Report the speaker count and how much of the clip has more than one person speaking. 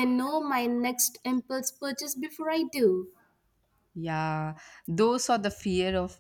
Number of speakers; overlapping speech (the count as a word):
two, no overlap